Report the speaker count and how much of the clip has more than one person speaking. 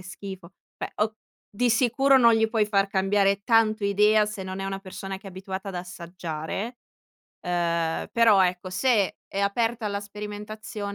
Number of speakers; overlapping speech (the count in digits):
1, no overlap